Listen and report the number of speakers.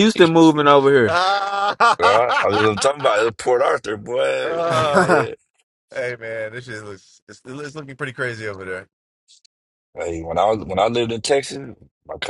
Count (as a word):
three